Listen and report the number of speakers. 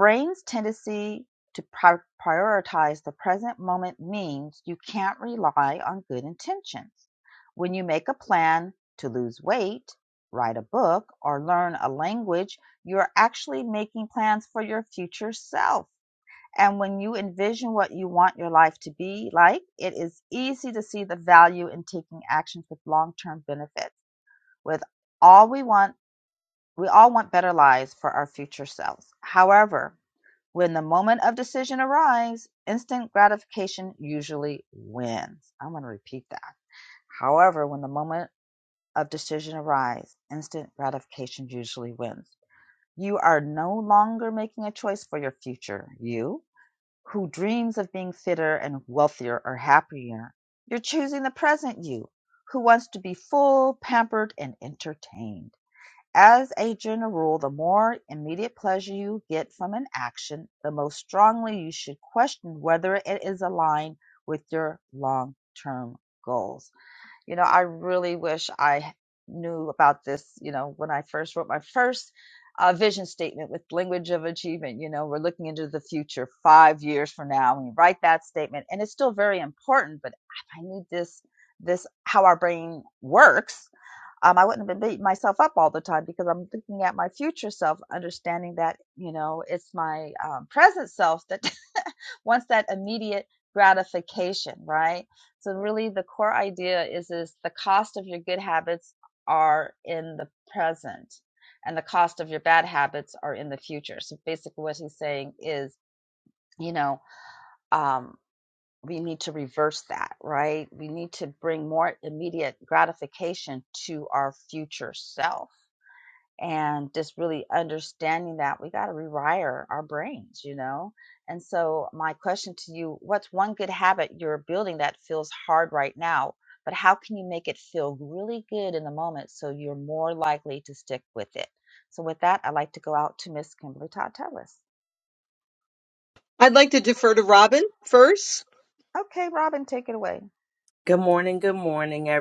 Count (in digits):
3